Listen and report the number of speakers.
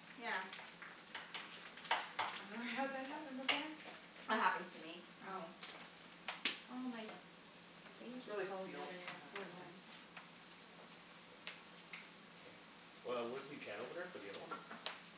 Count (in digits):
3